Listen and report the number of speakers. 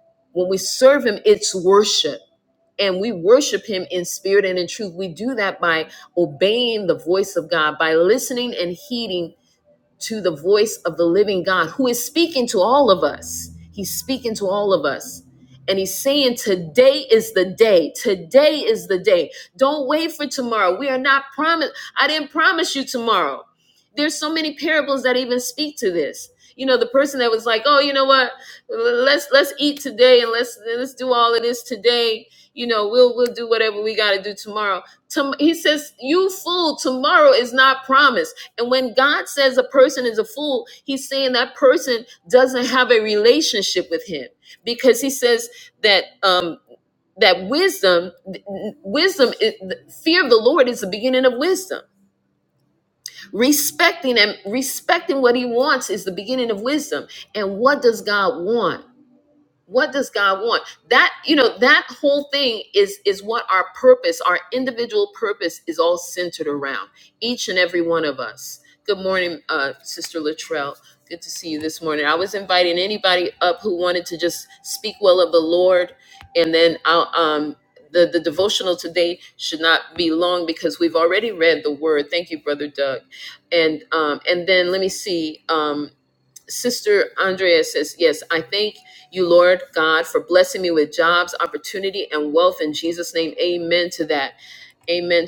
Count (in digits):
1